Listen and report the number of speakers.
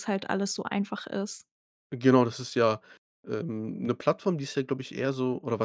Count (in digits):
2